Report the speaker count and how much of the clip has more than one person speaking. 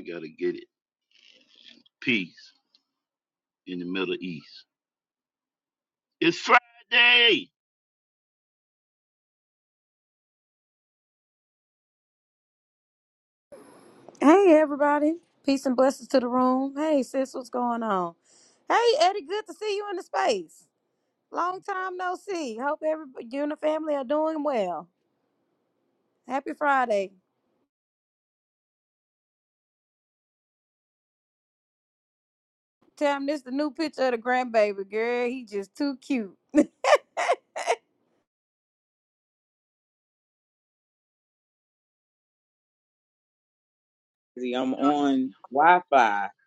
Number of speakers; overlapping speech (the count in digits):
3, no overlap